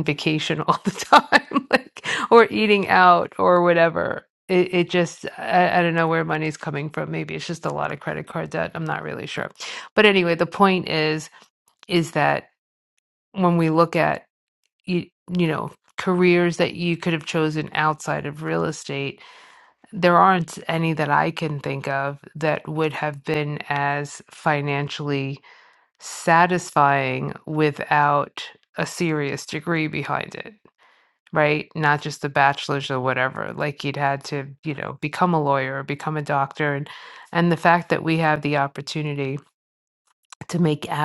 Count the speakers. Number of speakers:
one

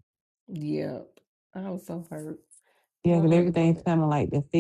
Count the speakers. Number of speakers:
two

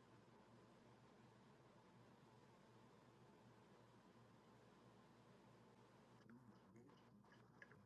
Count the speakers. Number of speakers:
zero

